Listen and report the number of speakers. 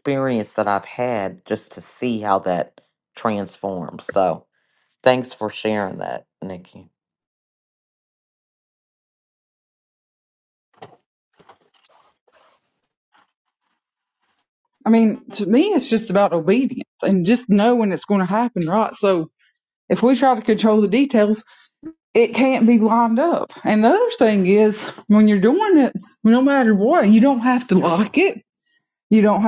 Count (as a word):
two